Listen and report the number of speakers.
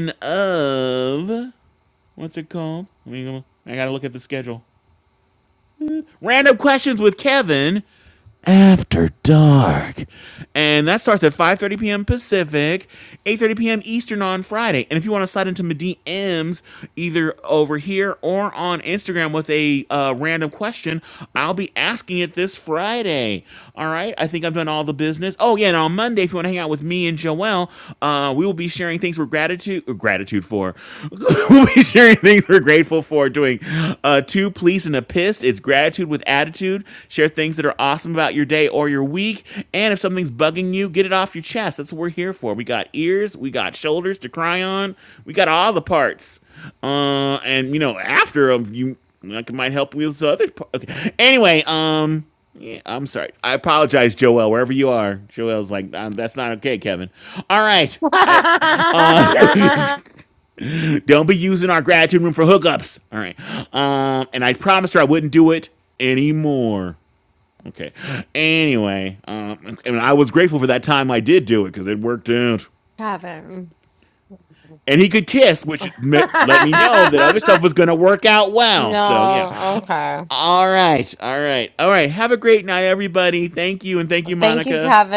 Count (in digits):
2